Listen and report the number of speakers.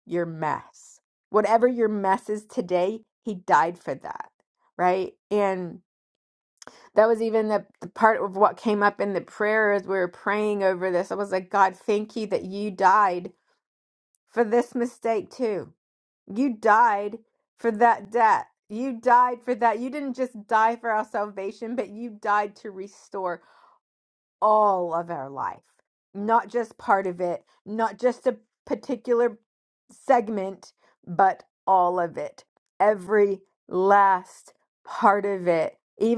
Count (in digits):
1